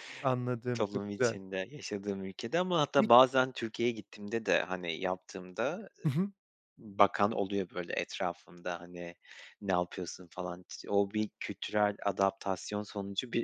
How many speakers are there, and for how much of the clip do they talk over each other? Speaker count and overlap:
2, about 5%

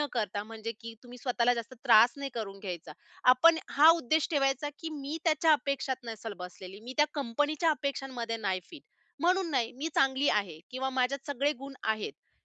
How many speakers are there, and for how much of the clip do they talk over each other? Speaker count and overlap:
1, no overlap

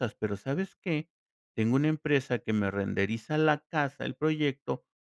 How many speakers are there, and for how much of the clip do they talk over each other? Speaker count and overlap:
1, no overlap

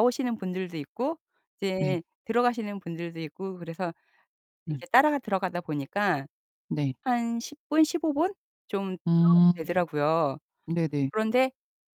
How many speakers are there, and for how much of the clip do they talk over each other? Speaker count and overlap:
2, about 6%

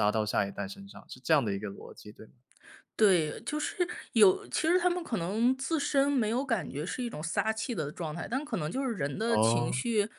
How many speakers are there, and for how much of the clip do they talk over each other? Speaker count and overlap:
2, about 5%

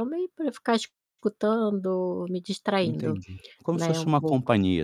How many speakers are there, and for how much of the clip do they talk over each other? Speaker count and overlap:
2, about 23%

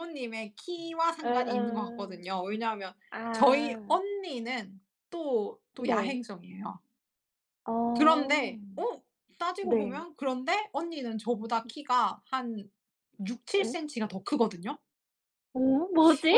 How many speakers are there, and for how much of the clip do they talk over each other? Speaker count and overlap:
2, about 19%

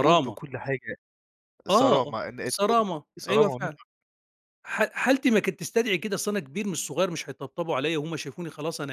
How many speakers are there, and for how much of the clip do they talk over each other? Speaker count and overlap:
2, about 18%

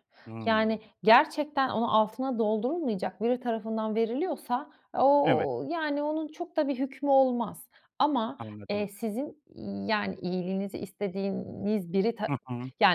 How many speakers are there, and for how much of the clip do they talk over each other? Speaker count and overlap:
2, about 8%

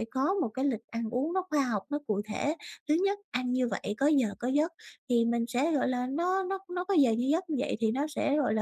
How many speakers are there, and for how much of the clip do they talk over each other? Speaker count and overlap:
1, no overlap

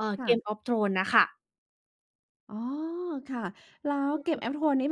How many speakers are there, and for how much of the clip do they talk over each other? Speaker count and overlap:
2, about 9%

